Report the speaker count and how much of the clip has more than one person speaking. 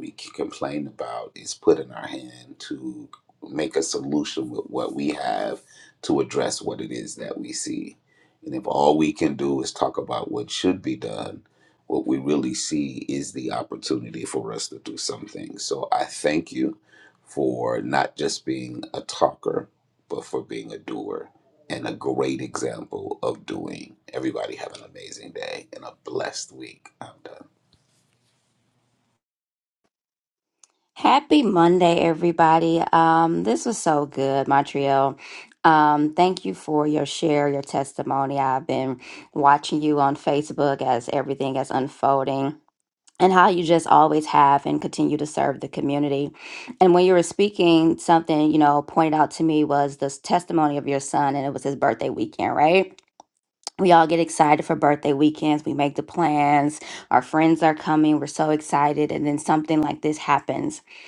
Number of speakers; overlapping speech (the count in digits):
2, no overlap